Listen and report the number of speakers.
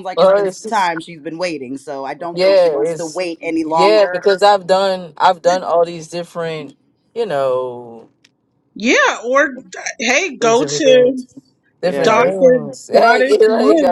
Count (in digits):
3